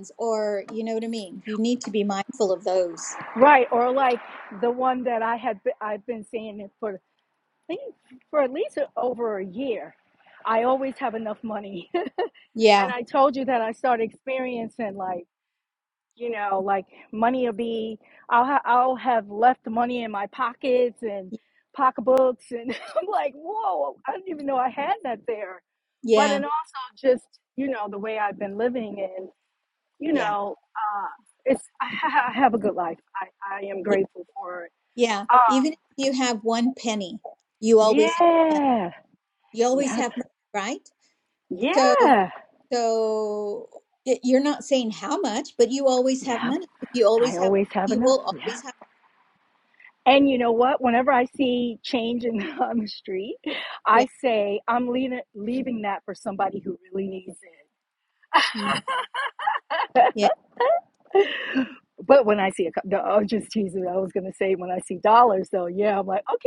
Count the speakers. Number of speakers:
2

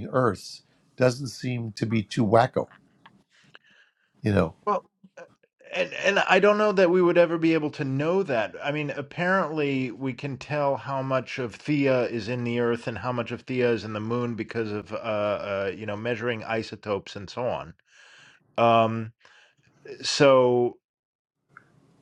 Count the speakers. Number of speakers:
2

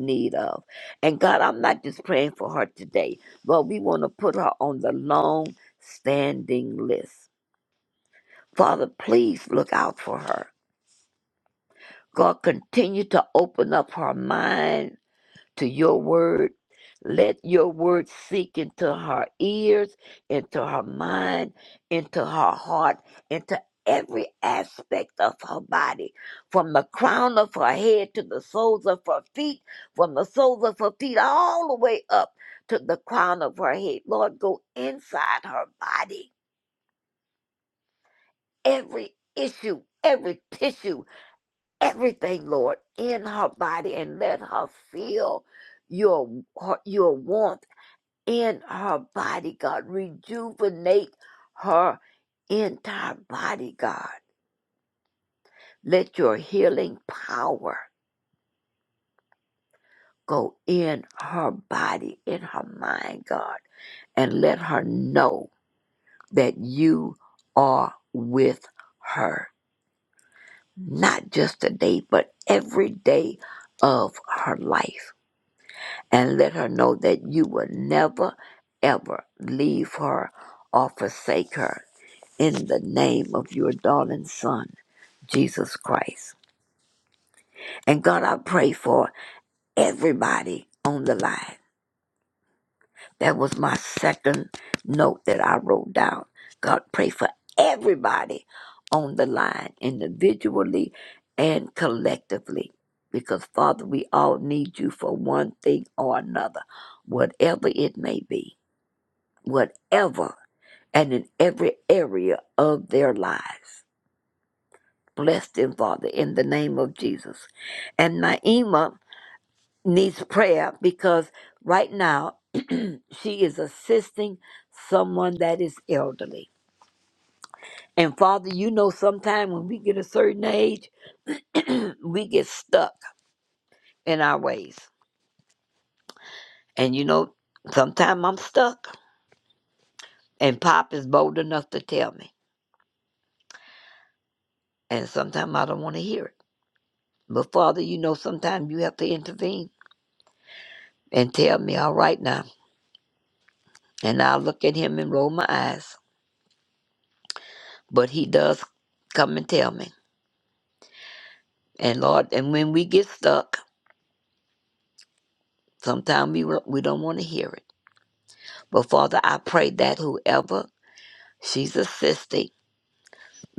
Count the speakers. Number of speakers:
1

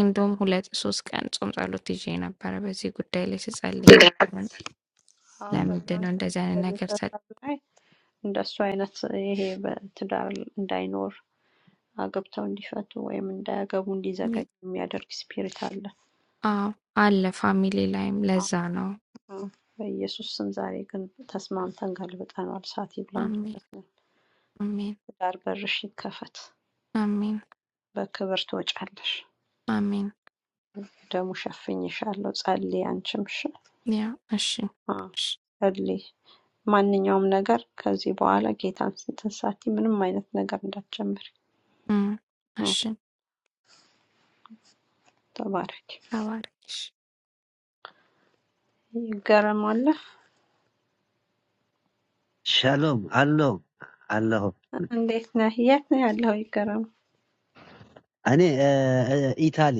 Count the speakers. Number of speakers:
3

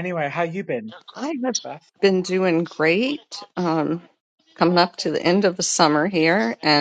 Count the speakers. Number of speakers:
2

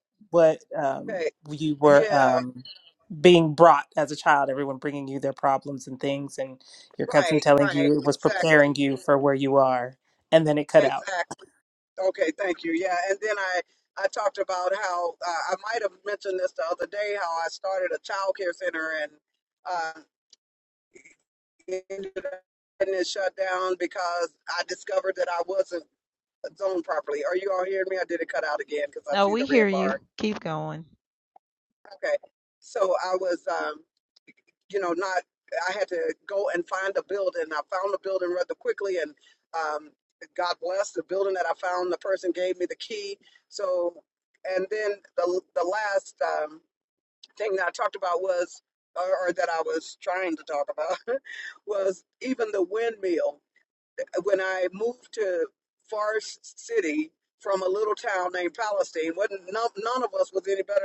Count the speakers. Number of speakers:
3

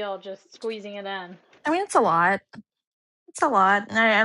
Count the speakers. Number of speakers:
2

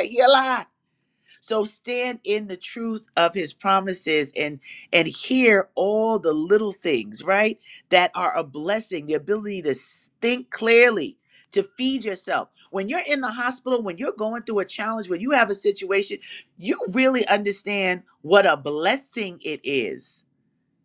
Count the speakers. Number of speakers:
1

